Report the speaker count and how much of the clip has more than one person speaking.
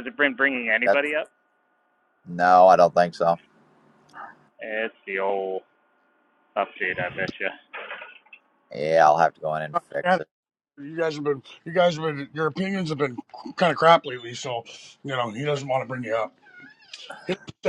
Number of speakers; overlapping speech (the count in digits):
3, about 2%